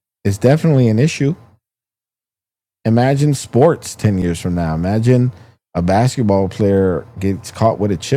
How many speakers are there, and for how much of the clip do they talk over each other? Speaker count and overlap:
1, no overlap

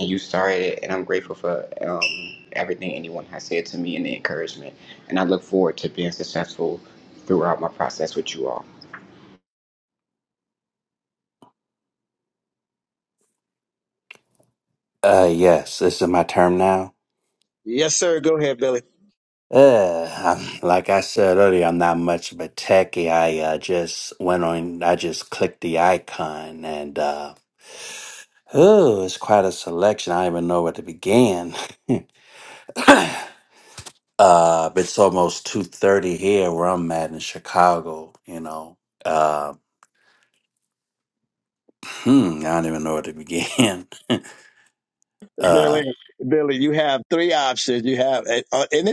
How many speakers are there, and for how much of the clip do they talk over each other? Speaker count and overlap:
3, about 1%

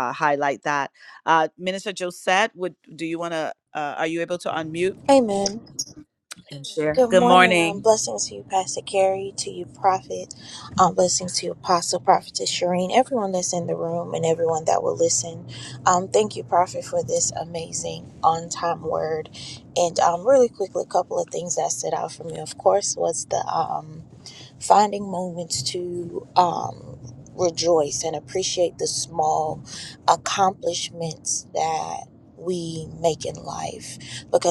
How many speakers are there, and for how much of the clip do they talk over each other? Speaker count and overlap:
2, about 2%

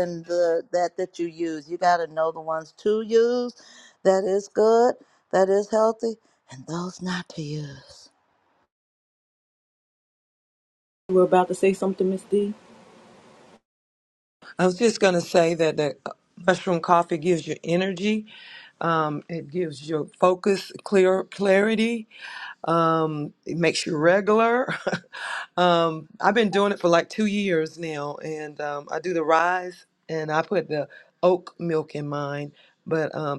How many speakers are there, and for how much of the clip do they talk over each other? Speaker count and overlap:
3, no overlap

